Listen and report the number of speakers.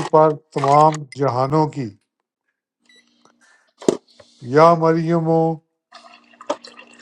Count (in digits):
1